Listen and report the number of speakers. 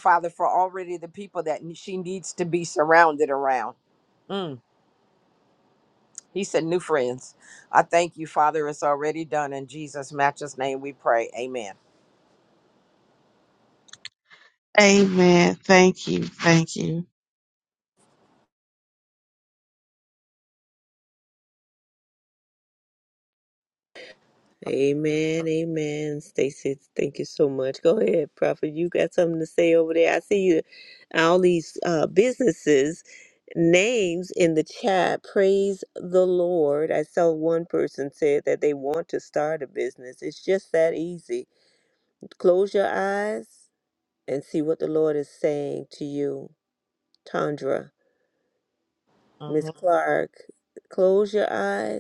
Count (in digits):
3